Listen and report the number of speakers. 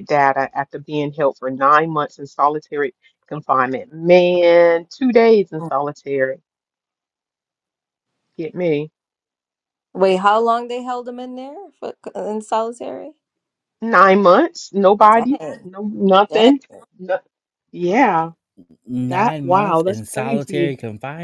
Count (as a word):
three